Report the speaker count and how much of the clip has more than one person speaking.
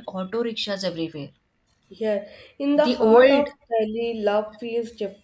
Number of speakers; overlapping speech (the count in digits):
2, about 15%